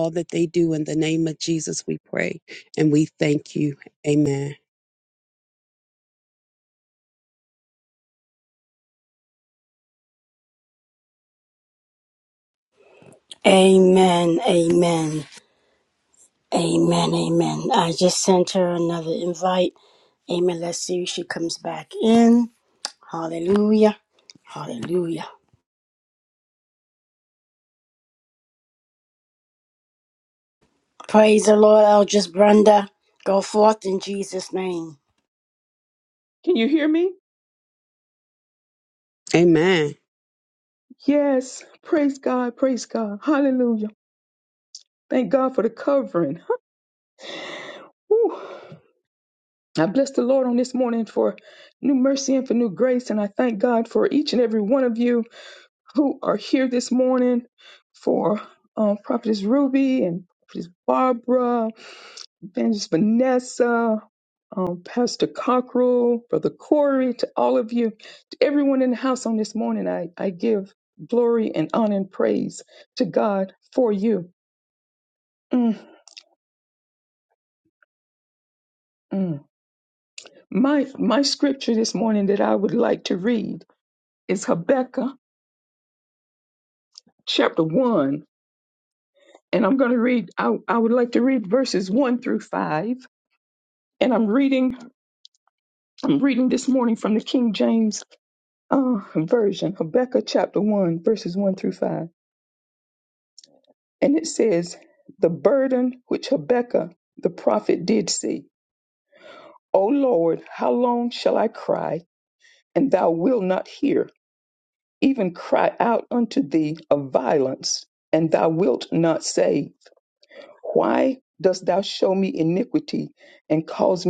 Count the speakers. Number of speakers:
3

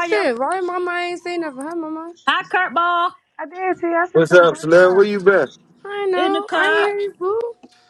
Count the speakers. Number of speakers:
4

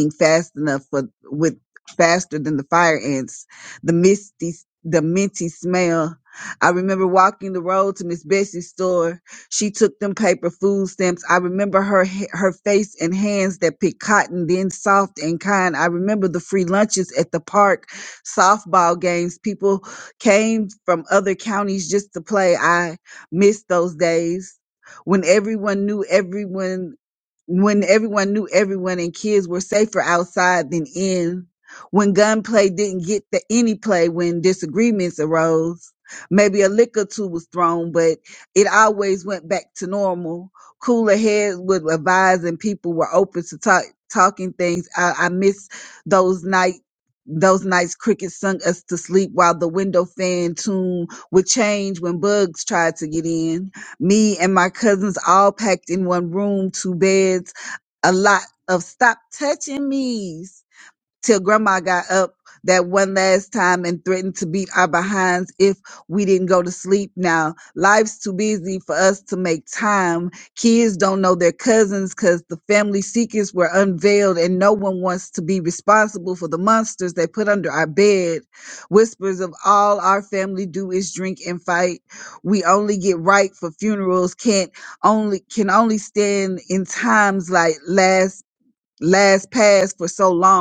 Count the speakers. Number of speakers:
1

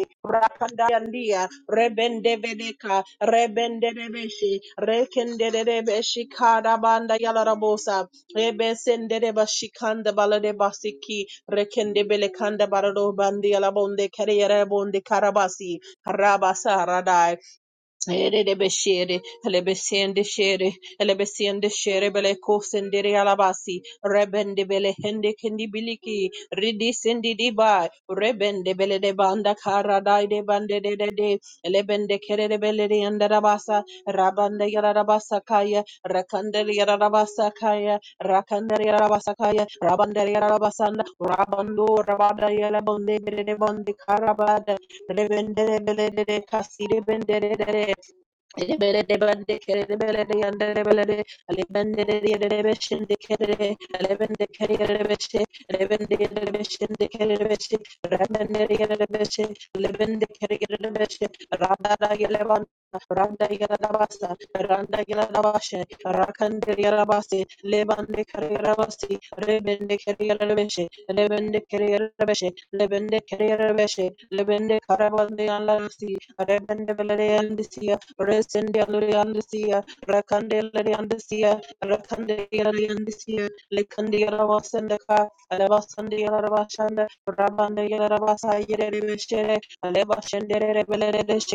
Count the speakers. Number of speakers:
1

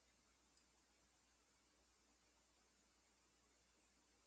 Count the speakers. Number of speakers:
0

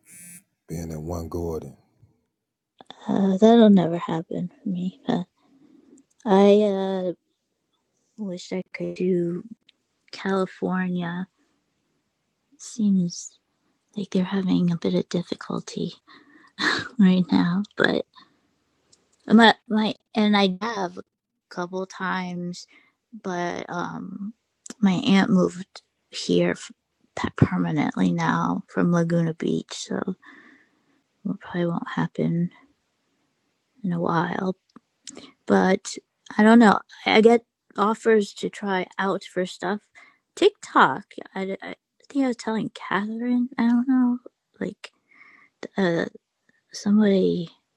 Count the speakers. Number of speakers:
2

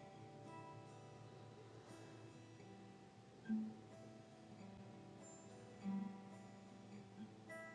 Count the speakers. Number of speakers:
0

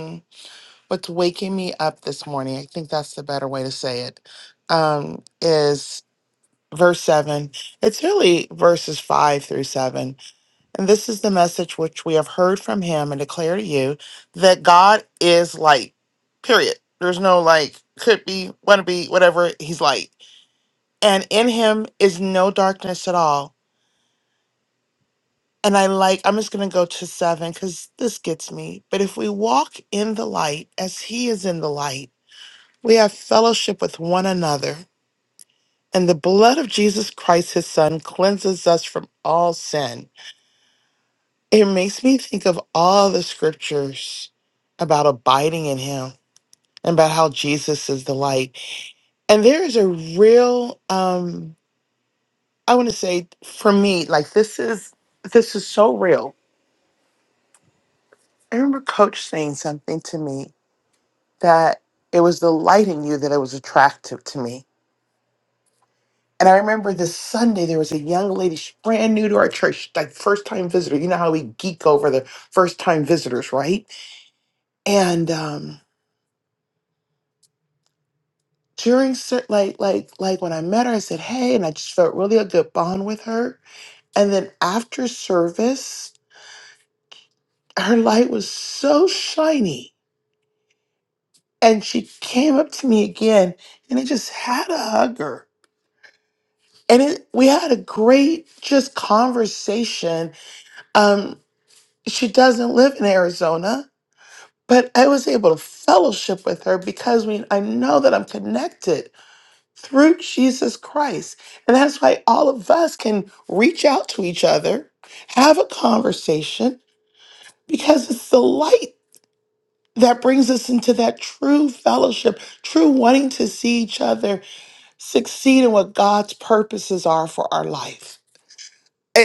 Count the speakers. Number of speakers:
1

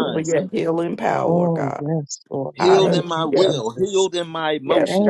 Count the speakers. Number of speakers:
3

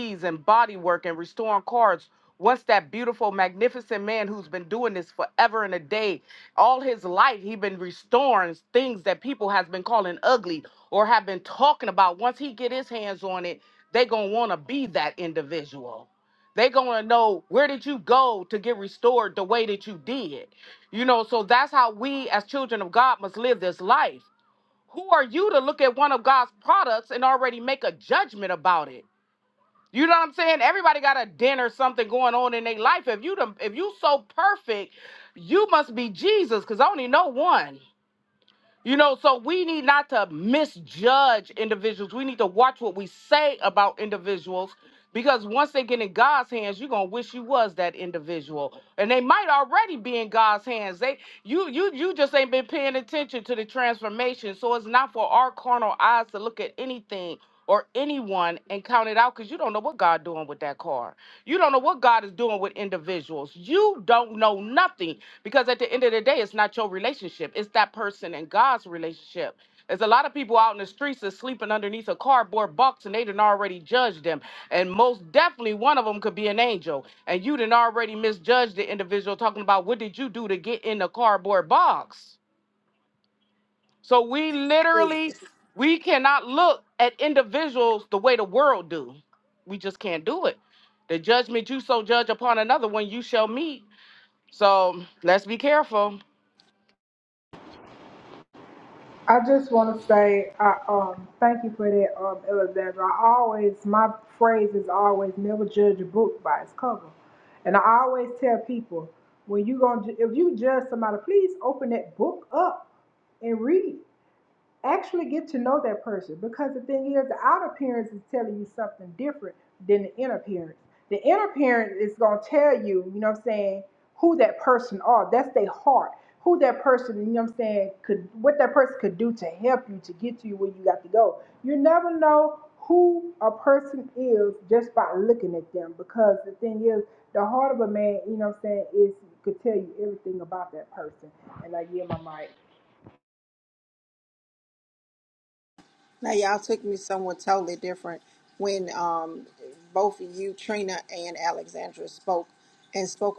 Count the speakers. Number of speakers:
3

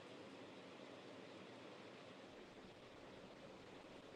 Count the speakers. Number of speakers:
0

